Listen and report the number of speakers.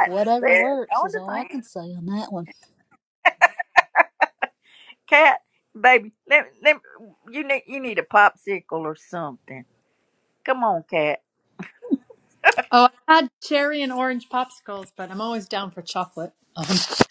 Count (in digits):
3